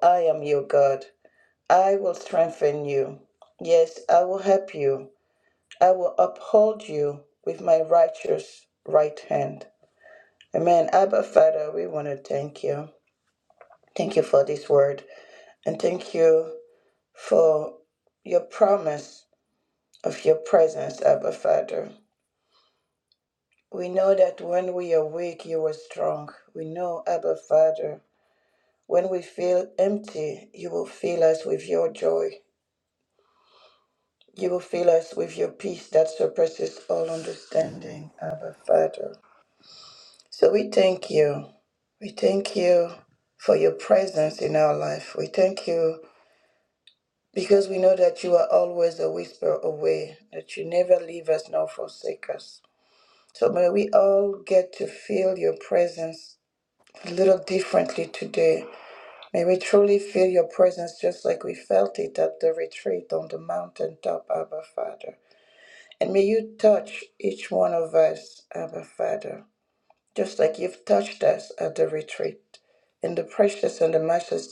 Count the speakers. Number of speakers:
one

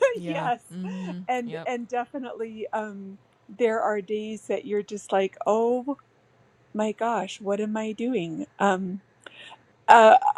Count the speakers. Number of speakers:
two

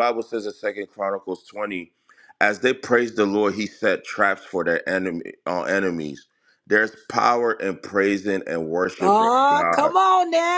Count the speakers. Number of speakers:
two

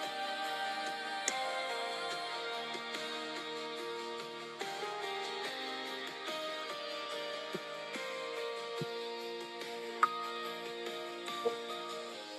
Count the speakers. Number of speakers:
zero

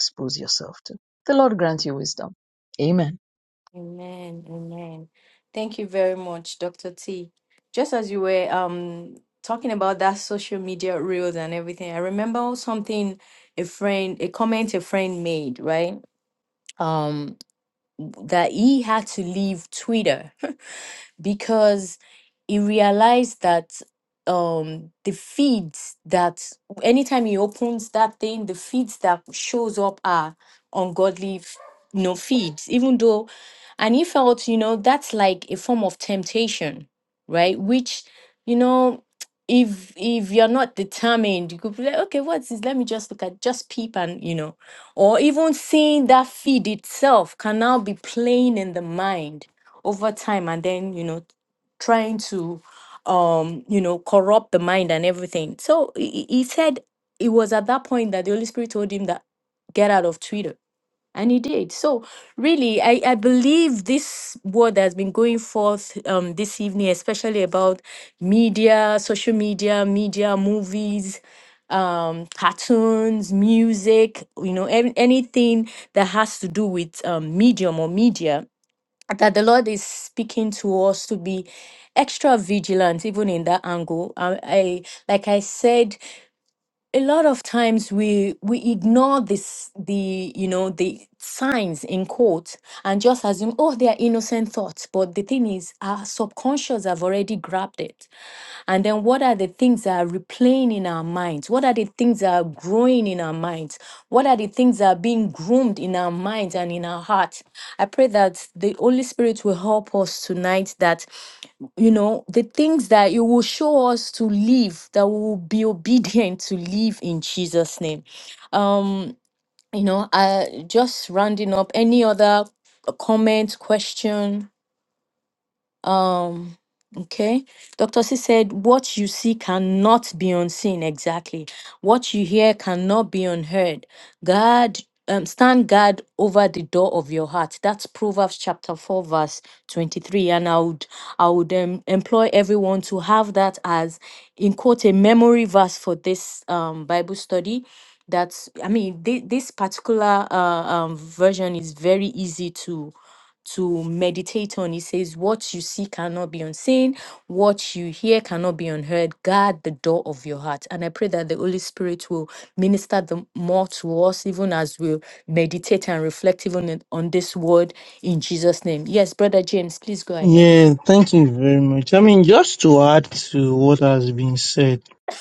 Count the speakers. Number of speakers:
three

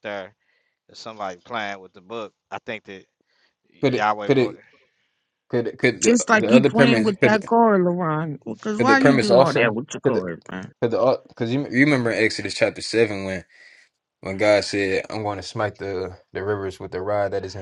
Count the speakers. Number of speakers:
three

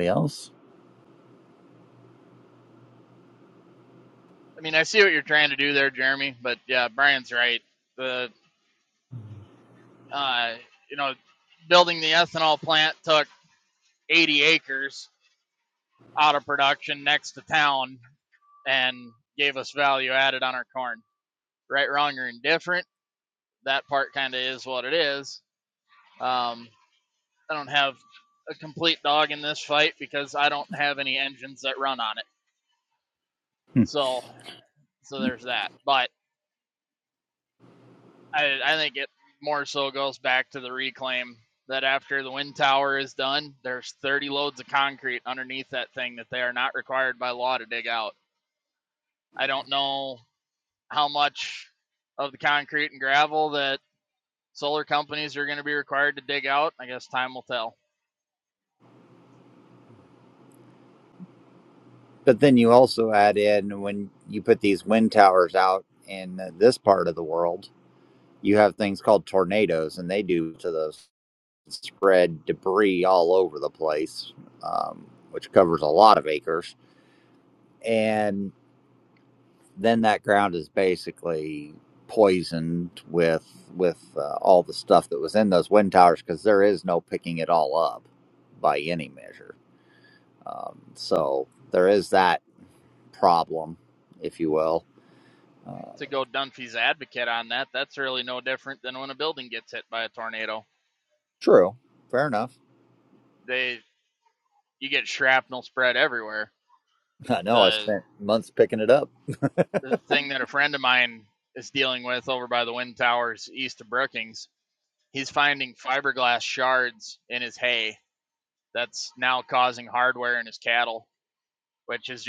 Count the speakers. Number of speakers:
two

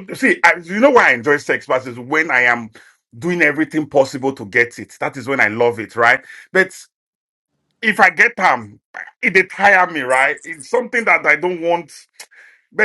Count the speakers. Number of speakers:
one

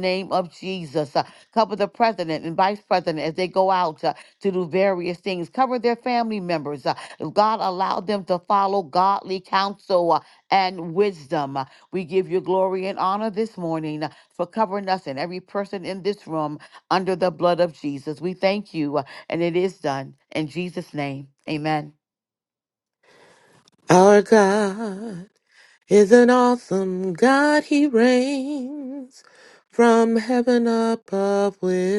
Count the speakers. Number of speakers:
two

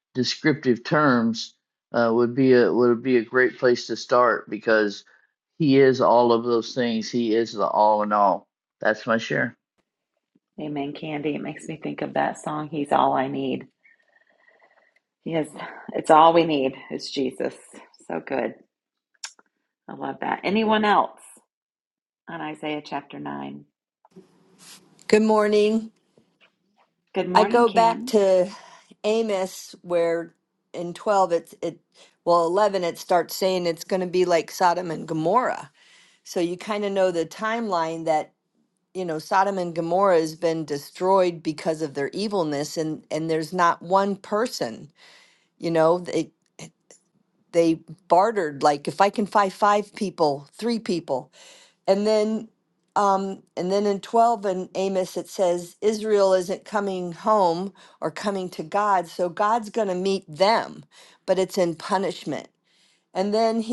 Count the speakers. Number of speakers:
three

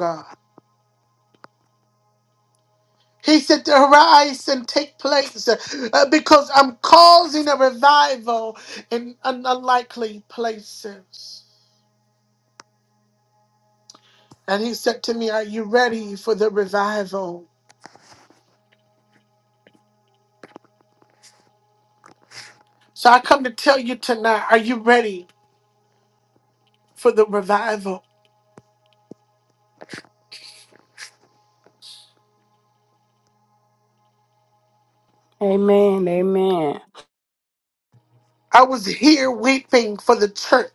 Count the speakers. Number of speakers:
two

